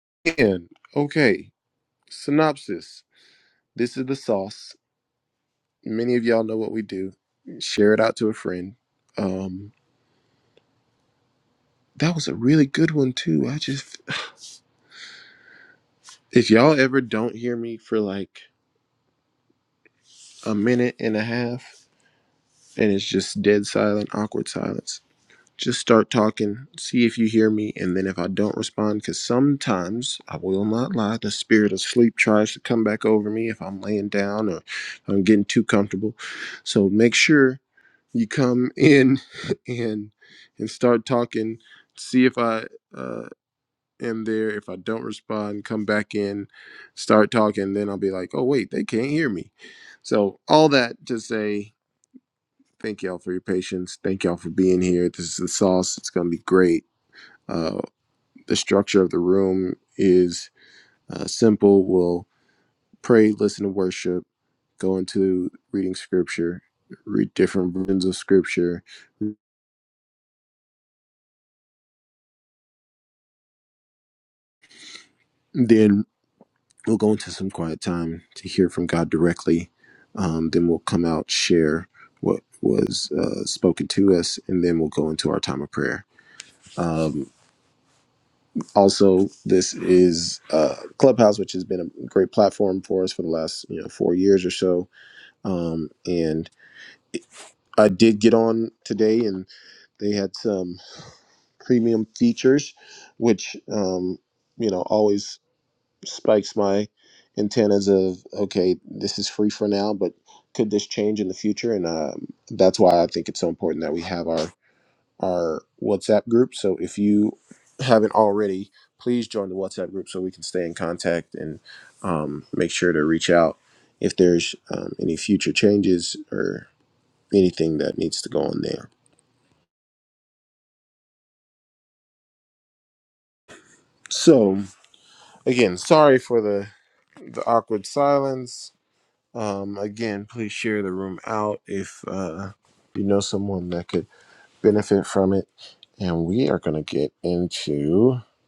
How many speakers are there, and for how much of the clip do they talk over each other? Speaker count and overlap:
one, no overlap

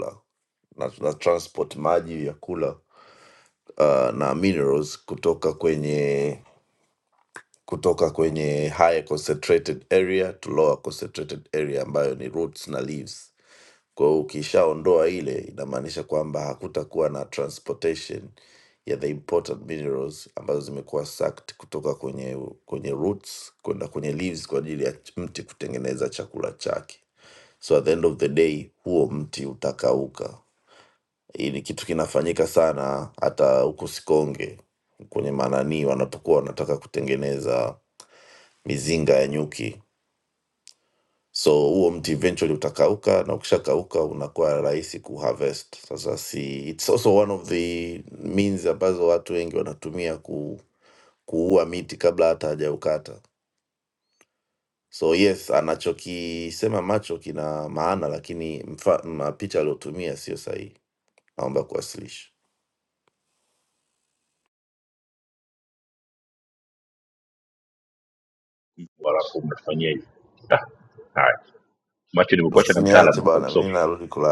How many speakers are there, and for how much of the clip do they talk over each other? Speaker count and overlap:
two, about 2%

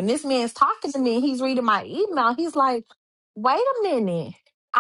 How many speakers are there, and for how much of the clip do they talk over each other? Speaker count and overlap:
one, no overlap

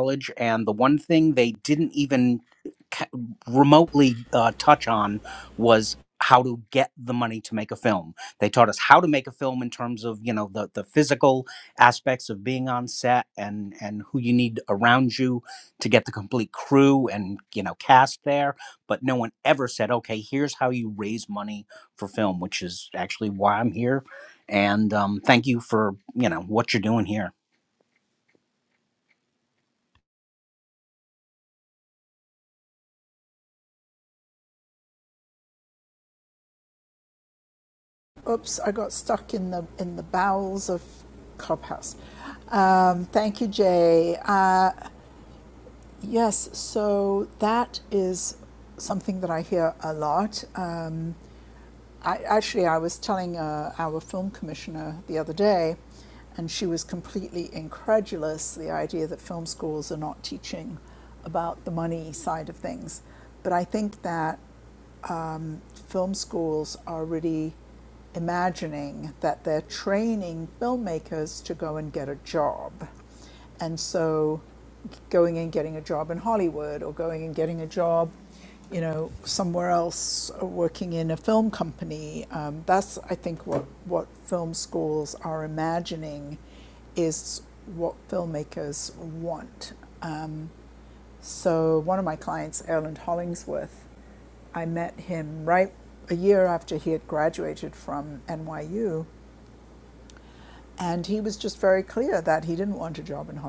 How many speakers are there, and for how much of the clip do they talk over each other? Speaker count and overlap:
two, no overlap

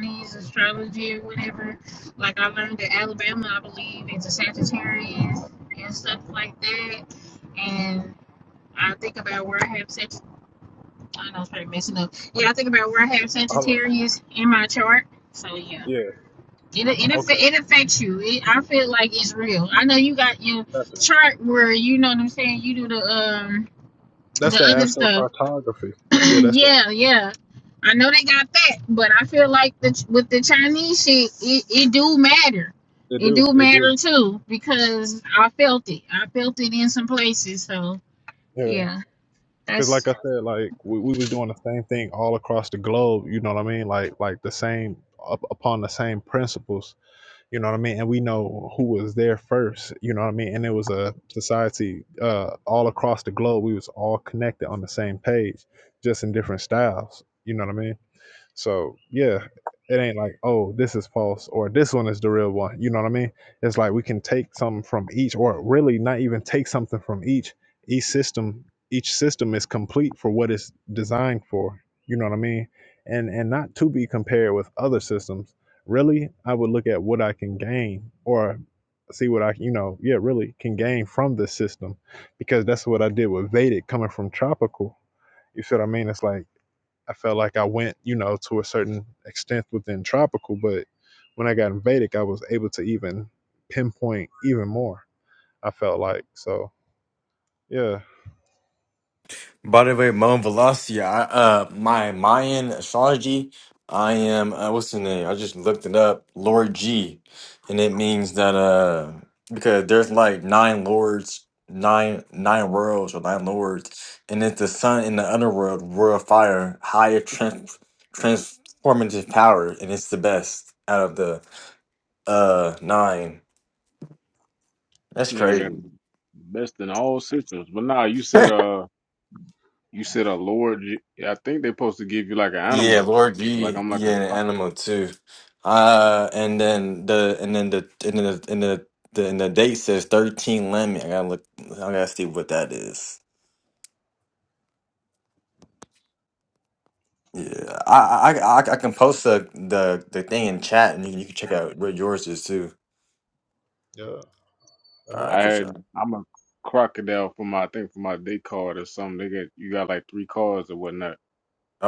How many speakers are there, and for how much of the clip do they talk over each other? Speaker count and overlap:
four, about 3%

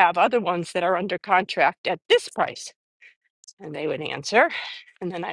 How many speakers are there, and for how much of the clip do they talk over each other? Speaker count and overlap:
one, no overlap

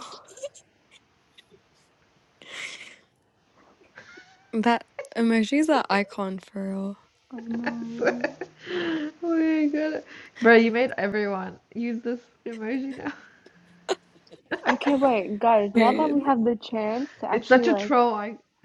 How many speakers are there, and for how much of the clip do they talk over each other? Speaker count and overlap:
three, about 10%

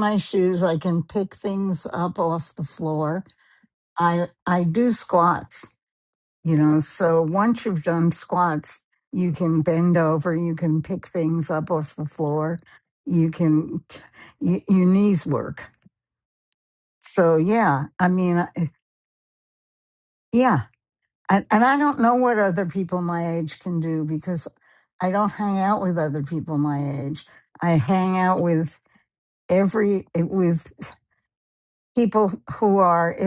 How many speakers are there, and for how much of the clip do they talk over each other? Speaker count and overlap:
one, no overlap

